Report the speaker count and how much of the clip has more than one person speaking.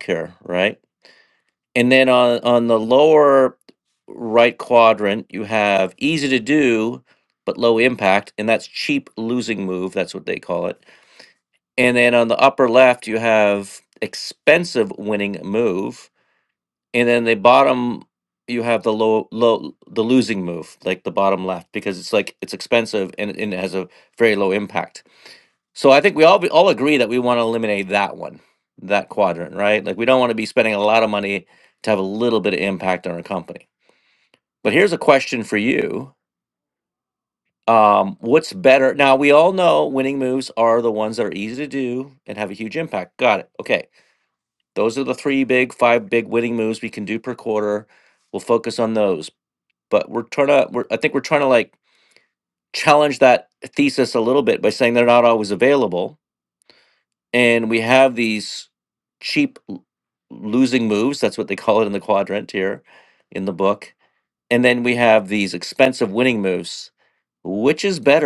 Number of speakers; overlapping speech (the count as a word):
one, no overlap